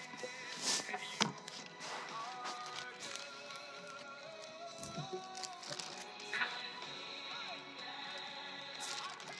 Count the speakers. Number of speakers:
0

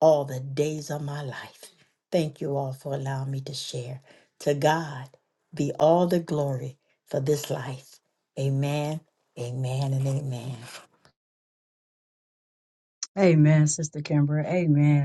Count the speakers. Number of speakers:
2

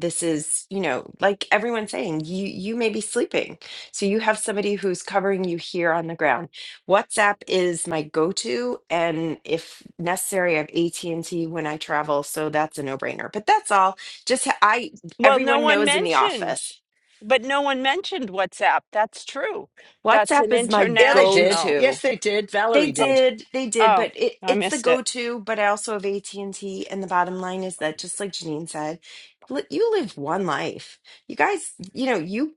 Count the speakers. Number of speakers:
3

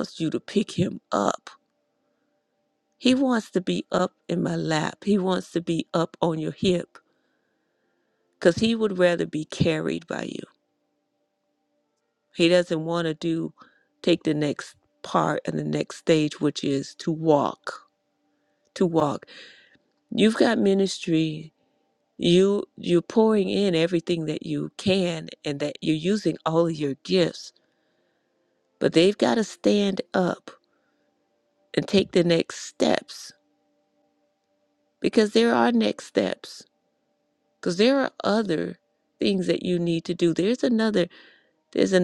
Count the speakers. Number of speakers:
1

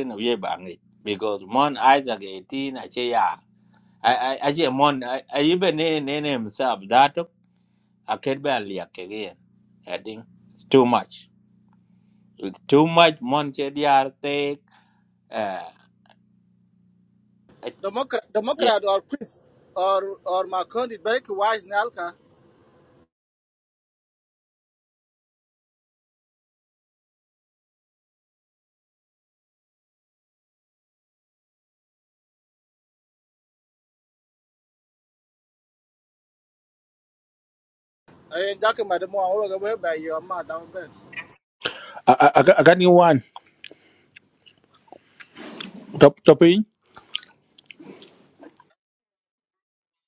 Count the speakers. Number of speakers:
3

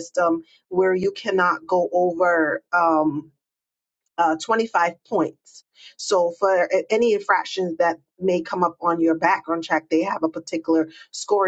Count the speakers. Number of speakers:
1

